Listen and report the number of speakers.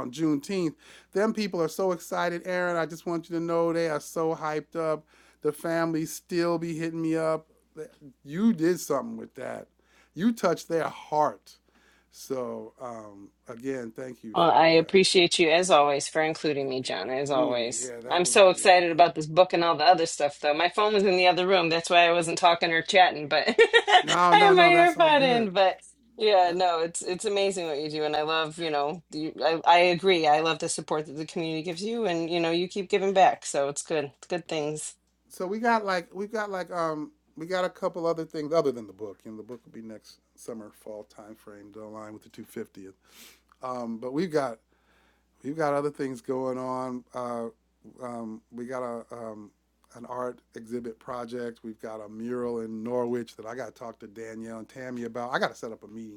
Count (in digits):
2